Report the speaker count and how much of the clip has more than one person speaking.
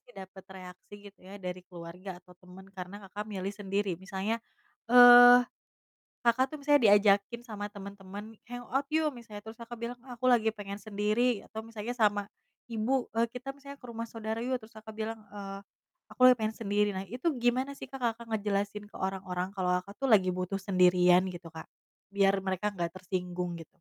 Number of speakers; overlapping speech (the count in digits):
1, no overlap